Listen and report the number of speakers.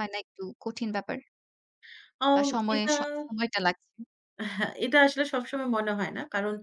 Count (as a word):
two